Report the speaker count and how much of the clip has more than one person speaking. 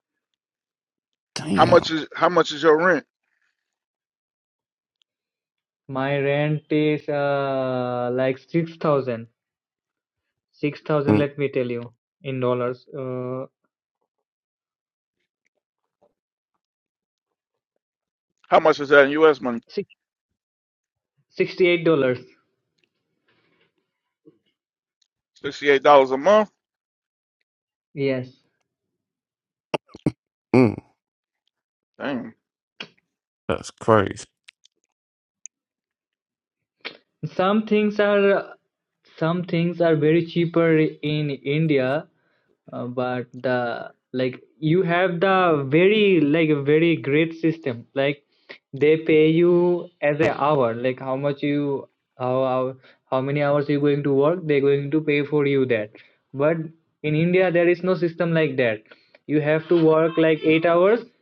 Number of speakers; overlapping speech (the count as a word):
three, about 1%